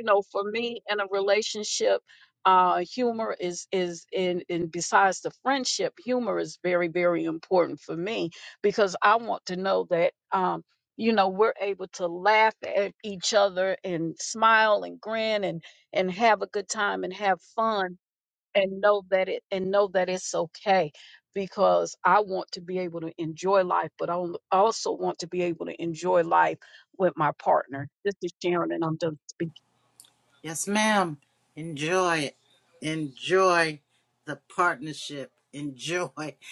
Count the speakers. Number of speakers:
two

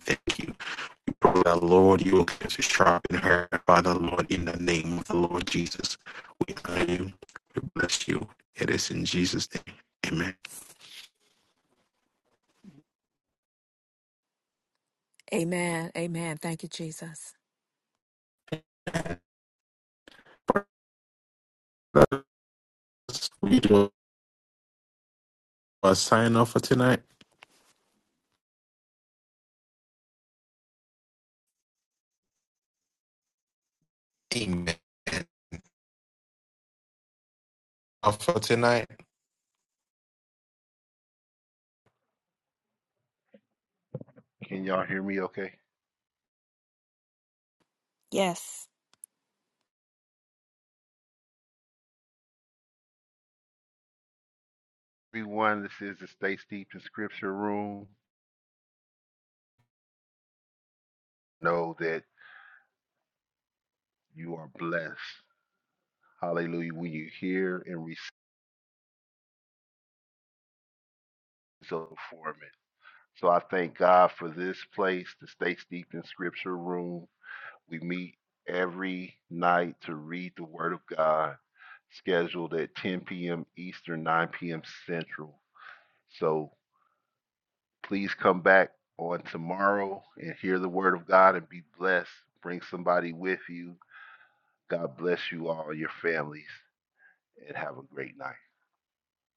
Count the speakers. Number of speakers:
three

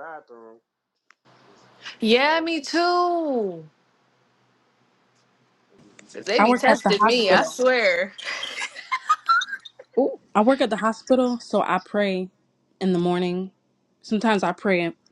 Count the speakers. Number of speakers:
three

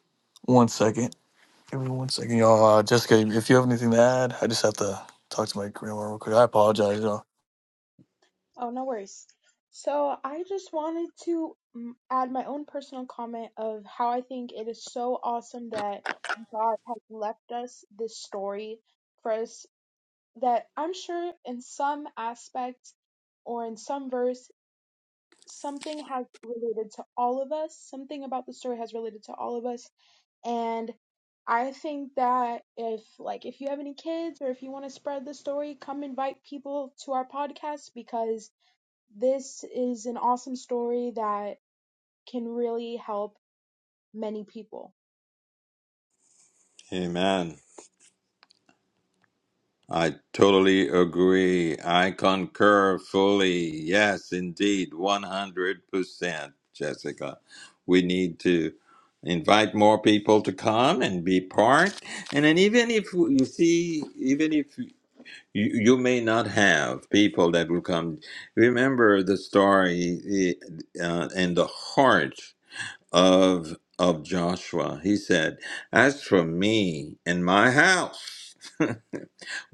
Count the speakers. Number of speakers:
three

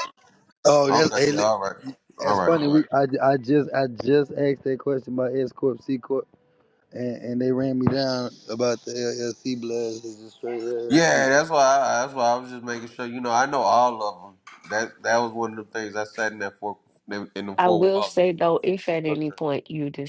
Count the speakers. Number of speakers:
three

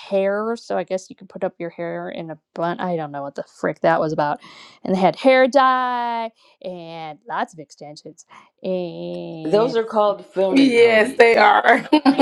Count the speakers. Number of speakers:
three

